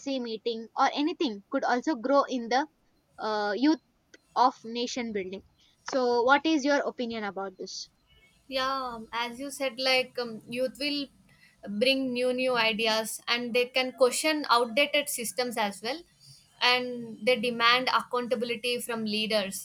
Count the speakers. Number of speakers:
two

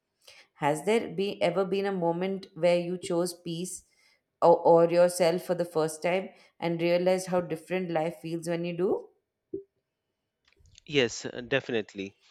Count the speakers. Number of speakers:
two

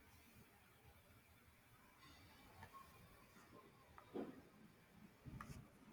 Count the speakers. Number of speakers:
zero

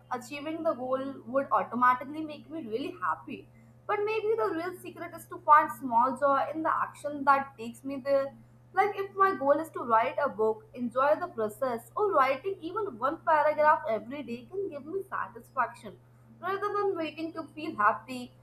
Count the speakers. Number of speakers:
one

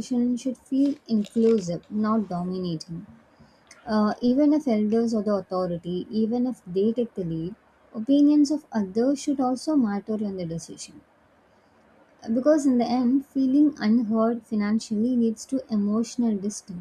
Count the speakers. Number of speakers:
one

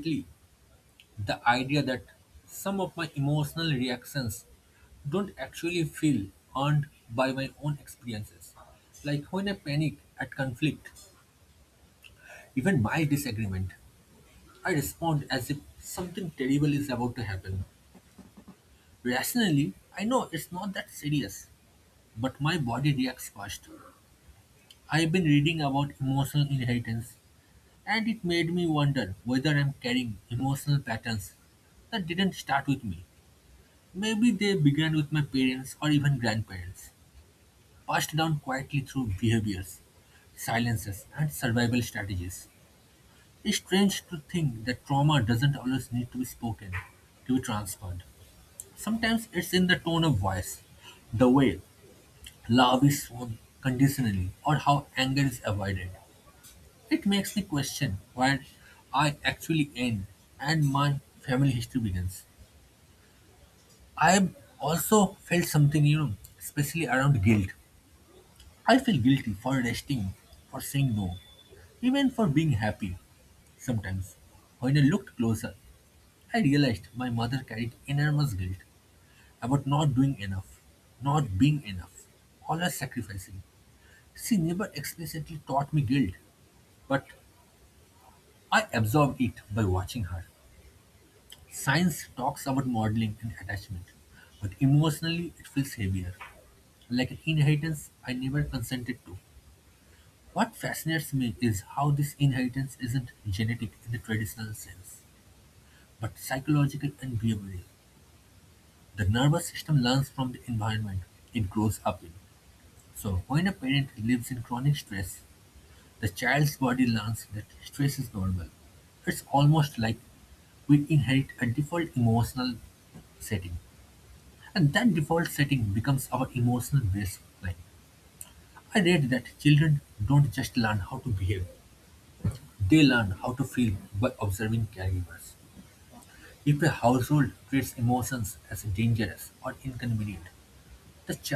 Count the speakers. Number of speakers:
one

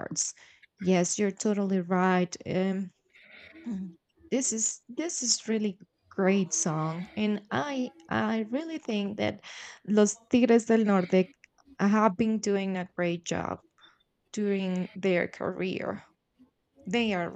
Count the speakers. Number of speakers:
one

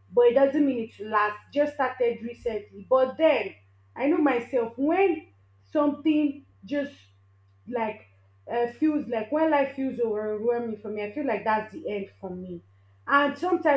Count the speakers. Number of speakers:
one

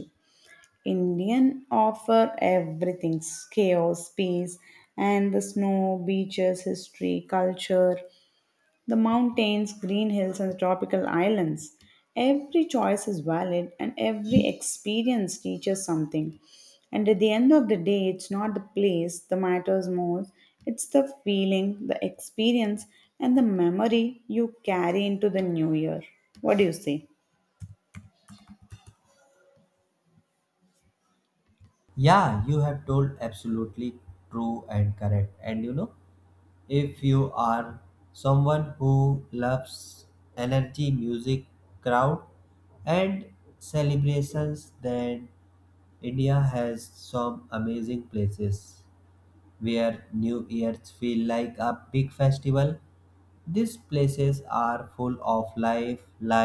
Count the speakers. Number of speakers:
two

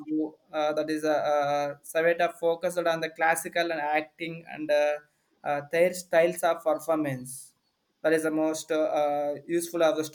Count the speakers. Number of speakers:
one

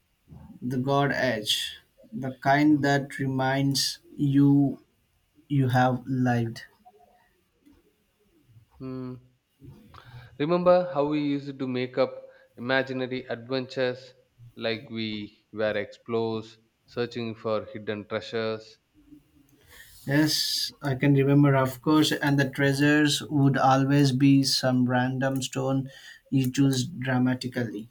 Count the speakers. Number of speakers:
two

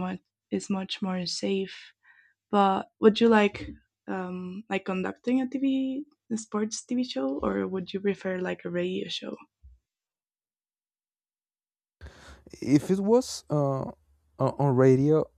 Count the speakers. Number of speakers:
two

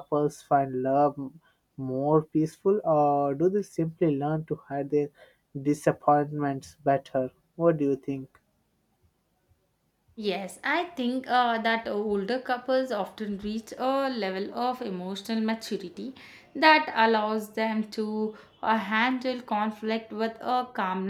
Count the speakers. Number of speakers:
two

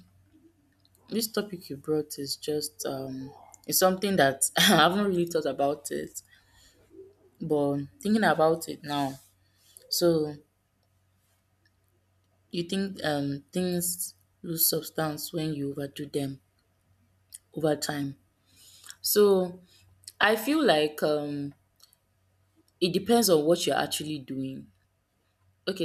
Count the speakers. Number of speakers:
one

